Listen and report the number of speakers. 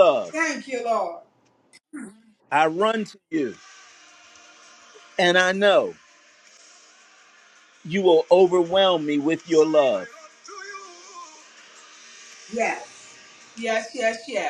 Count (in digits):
2